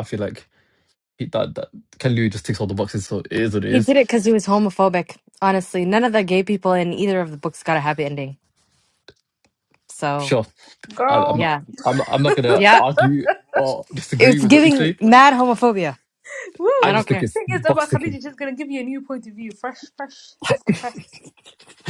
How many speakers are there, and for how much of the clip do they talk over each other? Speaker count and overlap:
three, about 14%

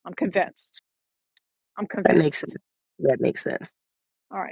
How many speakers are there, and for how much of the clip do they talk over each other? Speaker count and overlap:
two, about 4%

